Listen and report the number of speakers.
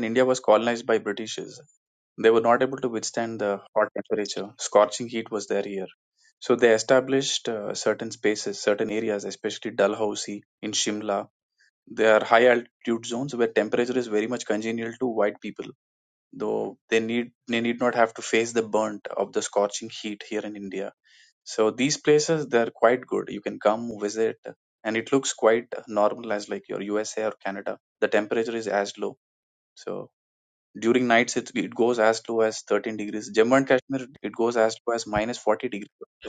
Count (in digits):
1